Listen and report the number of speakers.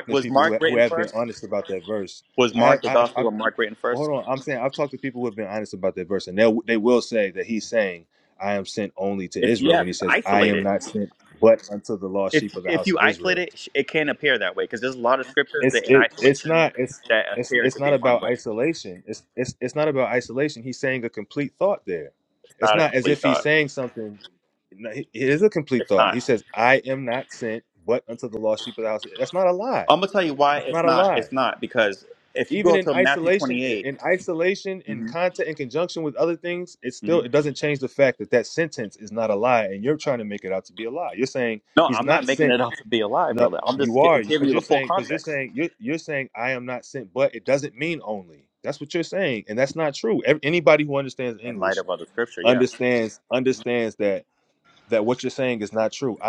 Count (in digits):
2